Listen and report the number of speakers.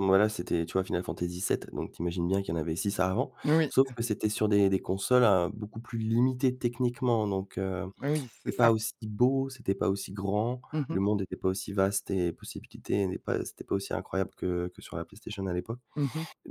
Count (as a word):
two